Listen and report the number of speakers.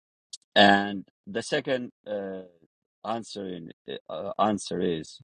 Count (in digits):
1